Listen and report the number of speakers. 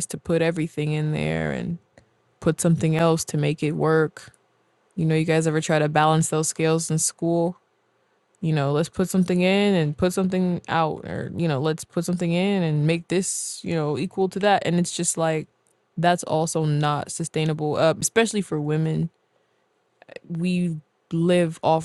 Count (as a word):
one